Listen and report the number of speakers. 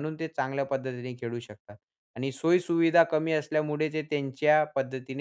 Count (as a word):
one